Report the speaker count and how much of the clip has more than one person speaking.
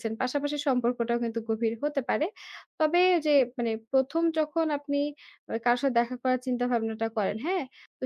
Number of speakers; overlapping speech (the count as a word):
one, no overlap